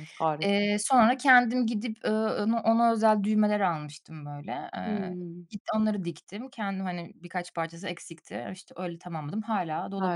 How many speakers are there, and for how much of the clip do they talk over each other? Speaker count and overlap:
2, about 7%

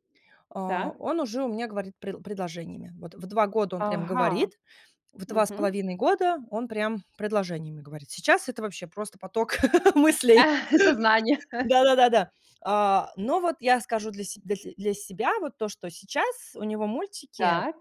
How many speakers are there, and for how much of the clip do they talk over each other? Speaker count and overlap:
2, about 10%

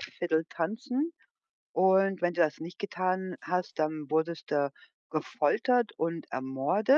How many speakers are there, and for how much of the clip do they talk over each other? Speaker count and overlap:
1, no overlap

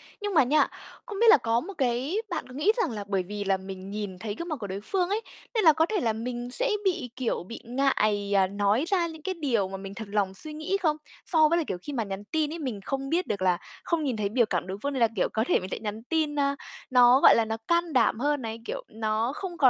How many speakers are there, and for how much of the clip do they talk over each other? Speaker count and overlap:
1, no overlap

